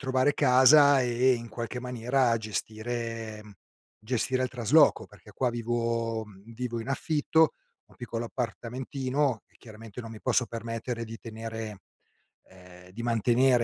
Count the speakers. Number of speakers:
one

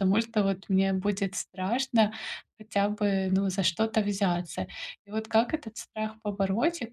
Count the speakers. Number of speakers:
one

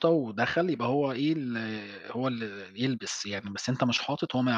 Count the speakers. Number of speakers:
one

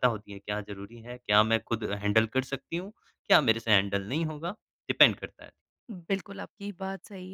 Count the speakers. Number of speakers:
two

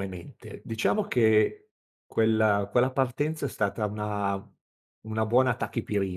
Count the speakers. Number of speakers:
one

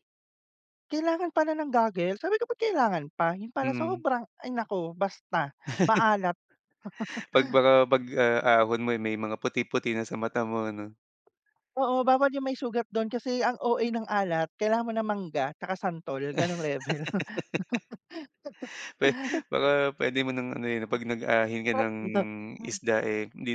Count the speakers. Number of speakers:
two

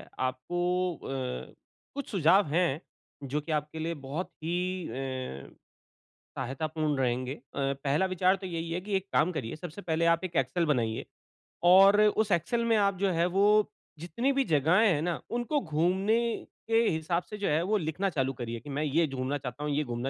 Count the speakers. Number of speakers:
one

